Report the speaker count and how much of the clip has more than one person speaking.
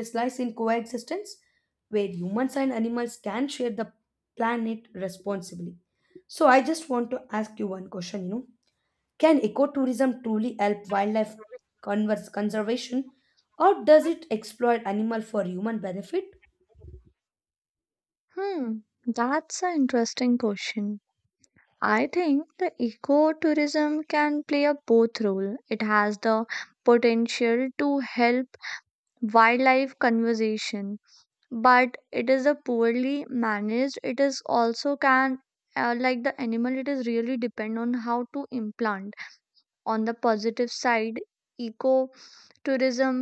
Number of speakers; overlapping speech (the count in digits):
2, no overlap